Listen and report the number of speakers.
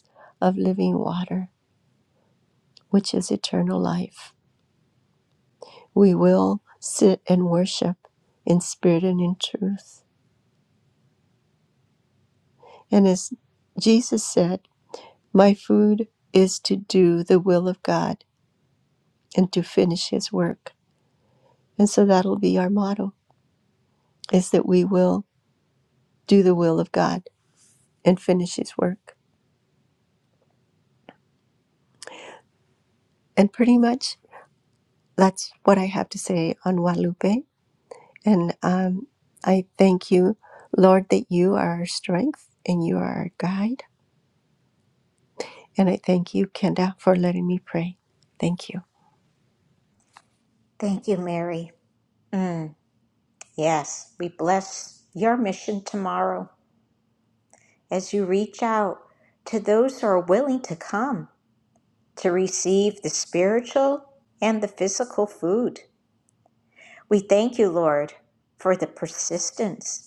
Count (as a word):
two